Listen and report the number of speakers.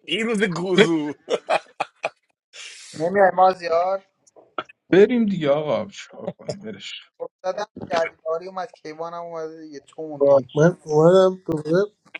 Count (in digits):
4